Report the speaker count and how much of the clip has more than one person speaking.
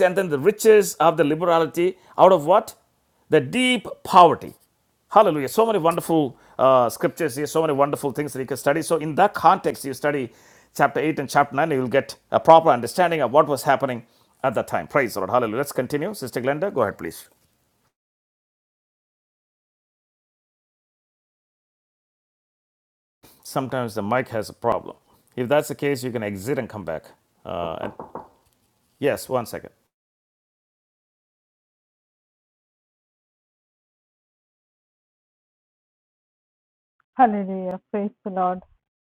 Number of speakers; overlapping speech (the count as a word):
two, no overlap